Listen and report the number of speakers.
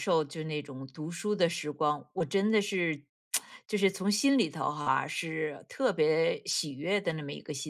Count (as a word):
one